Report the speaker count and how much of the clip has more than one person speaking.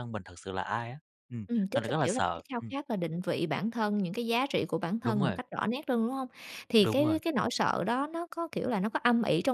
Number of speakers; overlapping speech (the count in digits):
2, about 20%